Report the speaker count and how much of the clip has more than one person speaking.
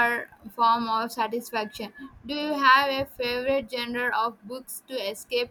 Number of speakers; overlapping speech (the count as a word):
one, no overlap